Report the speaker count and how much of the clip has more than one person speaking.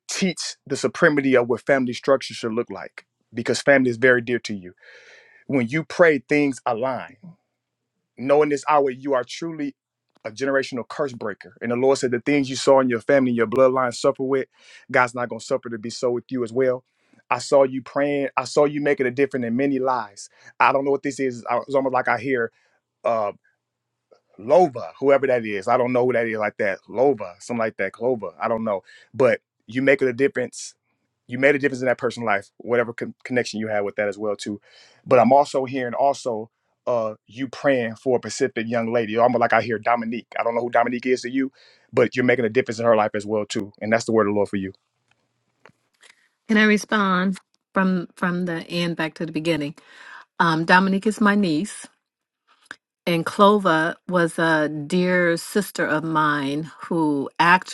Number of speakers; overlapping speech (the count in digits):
2, no overlap